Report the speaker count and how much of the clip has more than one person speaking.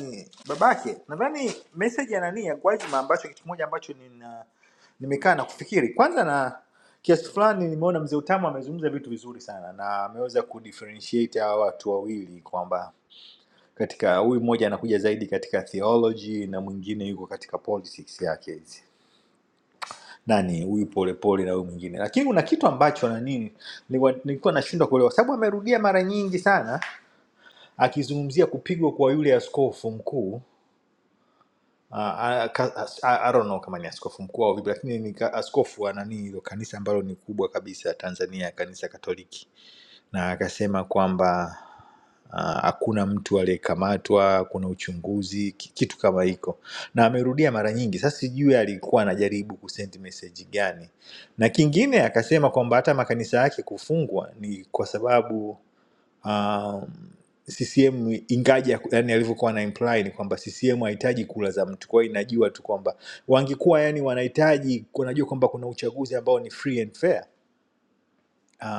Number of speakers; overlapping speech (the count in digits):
1, no overlap